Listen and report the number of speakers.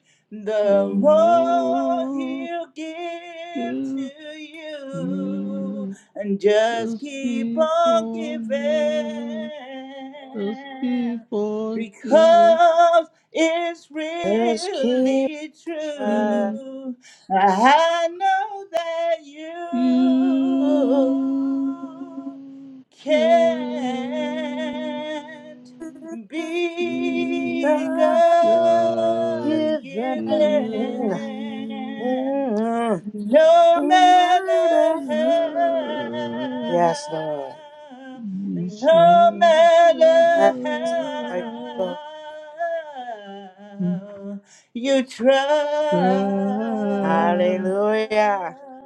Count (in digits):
3